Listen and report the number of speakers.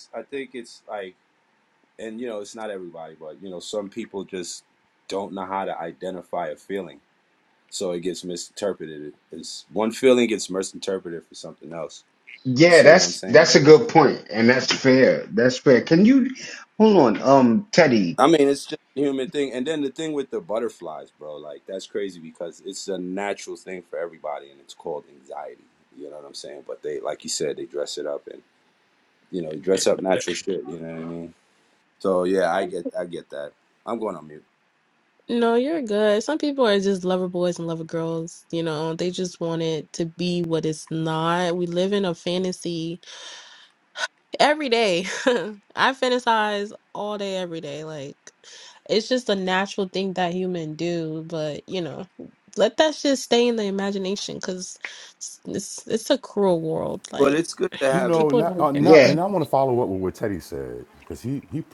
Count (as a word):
four